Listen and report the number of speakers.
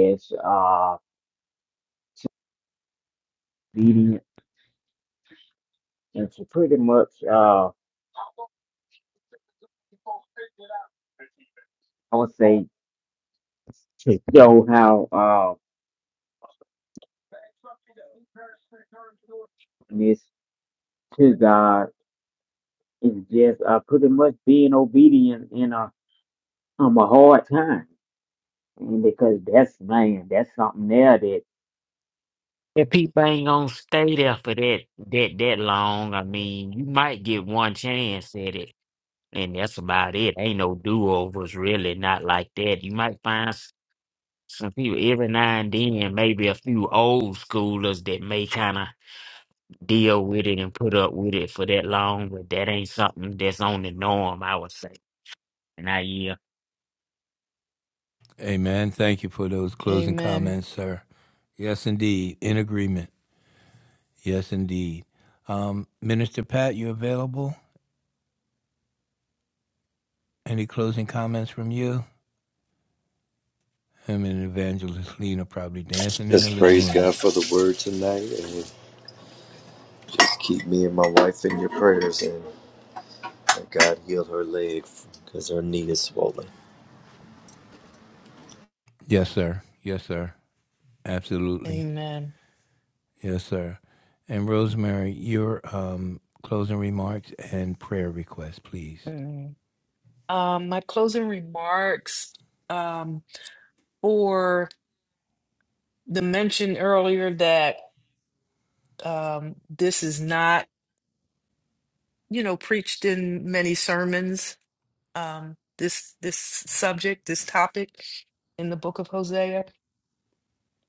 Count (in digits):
4